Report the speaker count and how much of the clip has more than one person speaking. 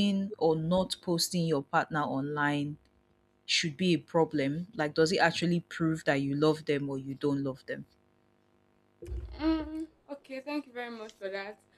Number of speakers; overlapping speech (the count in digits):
2, no overlap